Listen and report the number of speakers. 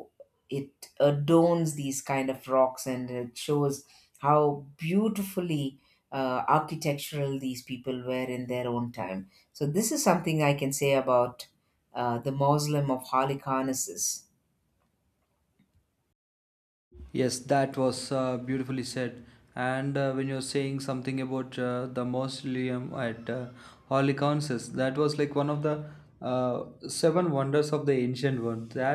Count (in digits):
2